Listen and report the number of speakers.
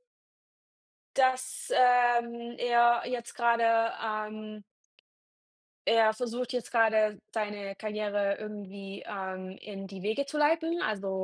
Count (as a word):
one